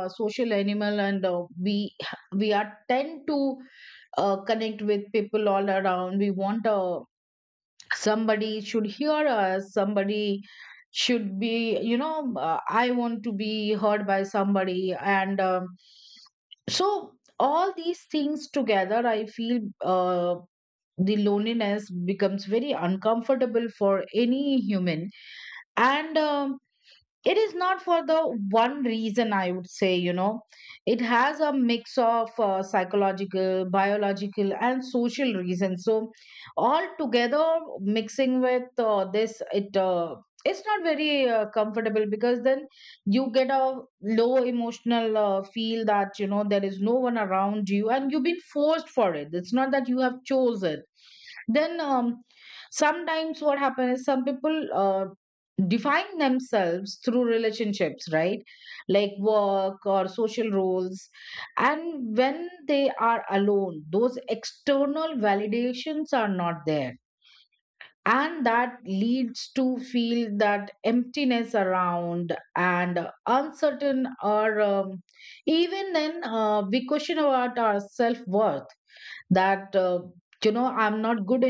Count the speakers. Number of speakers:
one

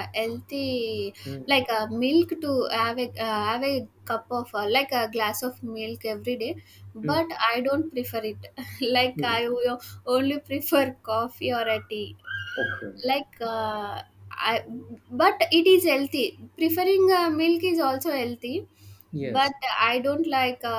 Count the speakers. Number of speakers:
two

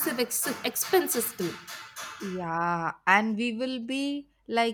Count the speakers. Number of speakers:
two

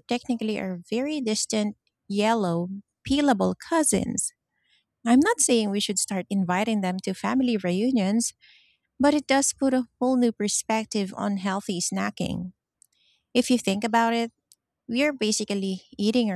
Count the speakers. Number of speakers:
one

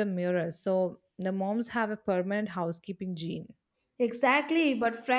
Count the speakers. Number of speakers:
two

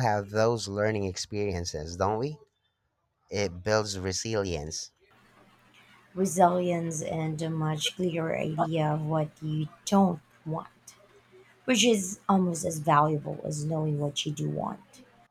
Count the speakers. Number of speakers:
two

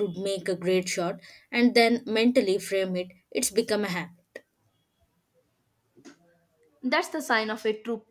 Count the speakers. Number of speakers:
two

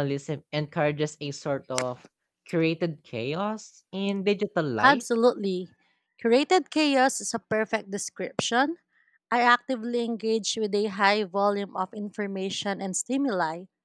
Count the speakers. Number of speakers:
two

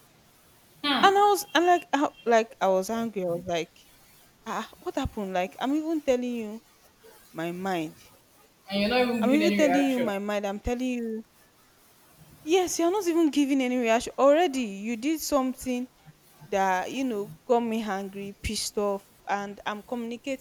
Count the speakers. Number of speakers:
two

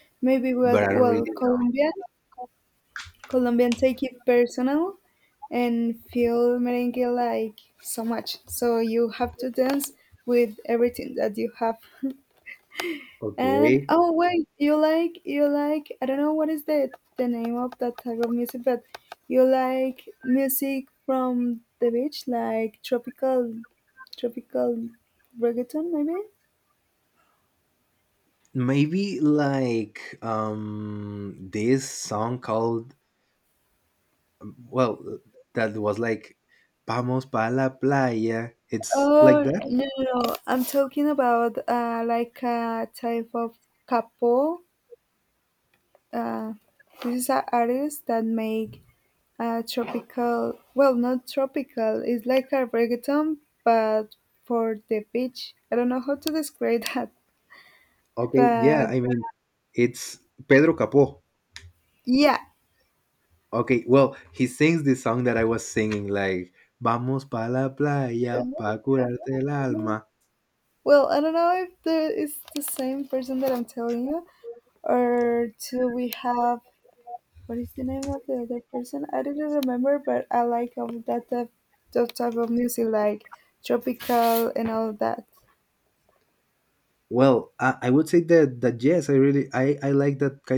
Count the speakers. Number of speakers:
two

